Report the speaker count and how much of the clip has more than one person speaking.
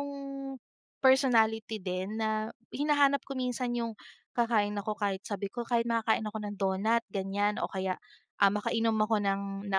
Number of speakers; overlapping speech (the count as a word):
one, no overlap